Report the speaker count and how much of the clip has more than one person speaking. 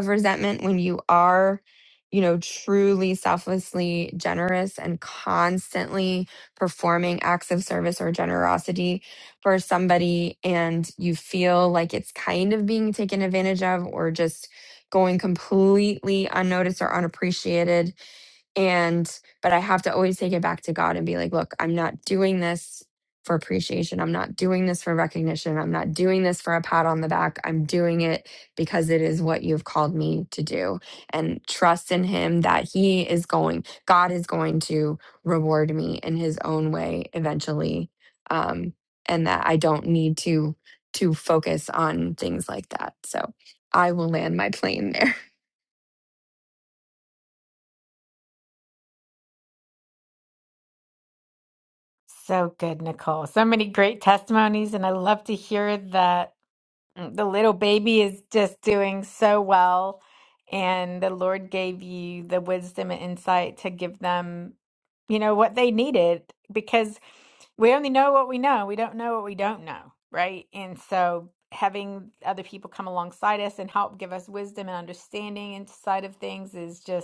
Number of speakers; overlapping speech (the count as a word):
two, no overlap